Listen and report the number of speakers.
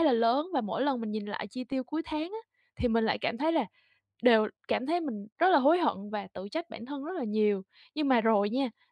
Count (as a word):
one